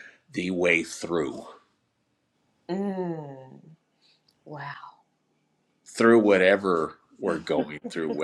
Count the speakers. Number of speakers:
2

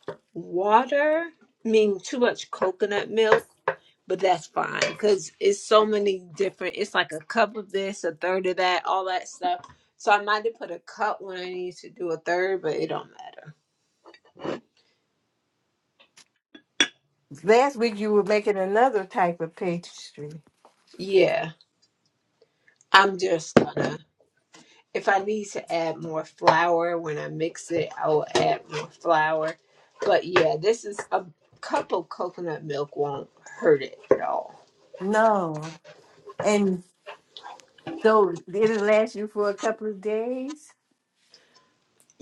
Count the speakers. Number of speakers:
2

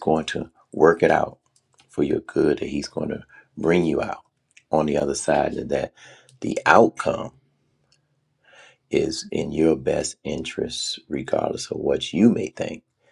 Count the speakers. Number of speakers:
1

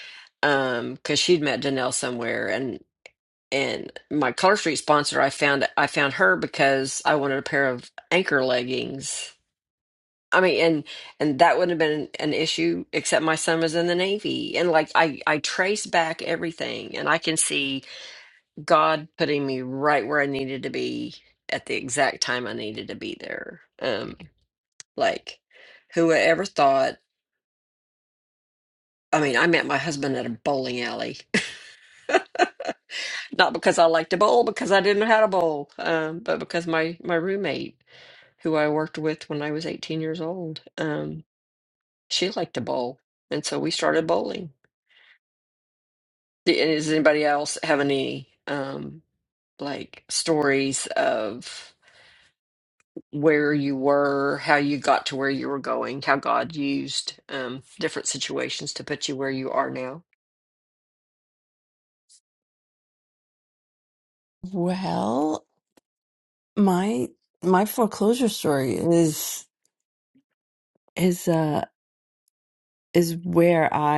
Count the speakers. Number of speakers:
2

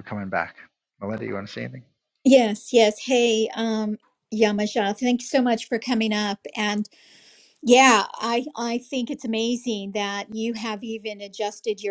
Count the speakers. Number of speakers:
2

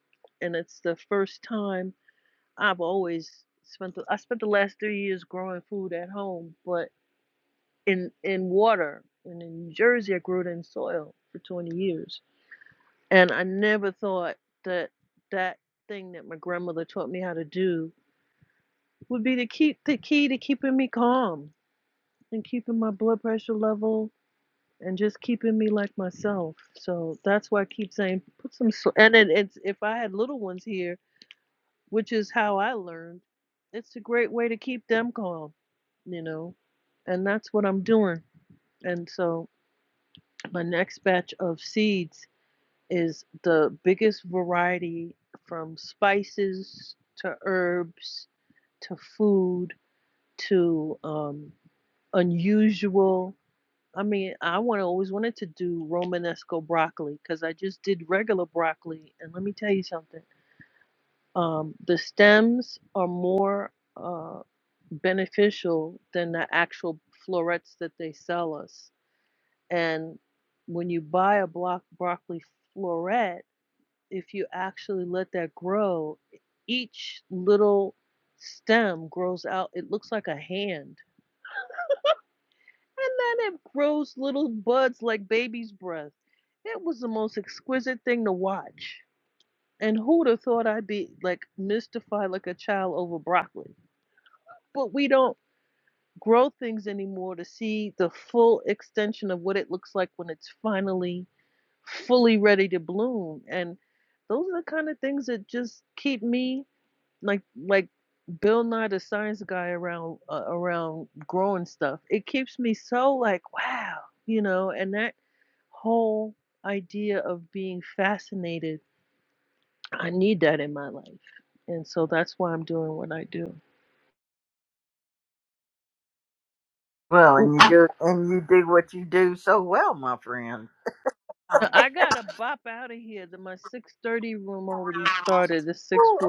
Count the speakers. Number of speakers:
2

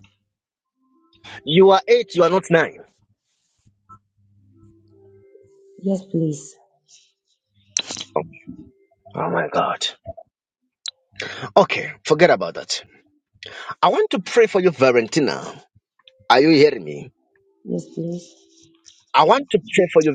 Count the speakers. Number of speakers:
2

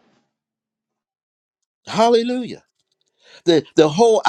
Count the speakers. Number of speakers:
1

